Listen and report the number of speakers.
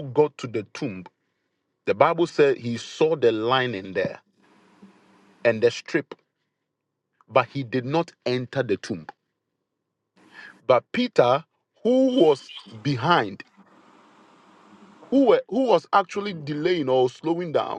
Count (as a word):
one